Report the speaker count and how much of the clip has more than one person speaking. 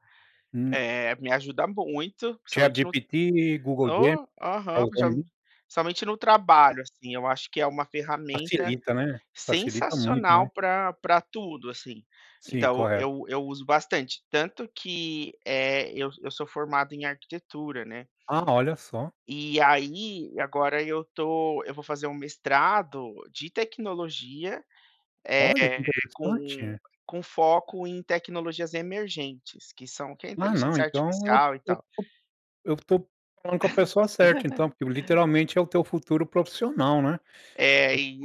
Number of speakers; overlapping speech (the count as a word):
two, about 14%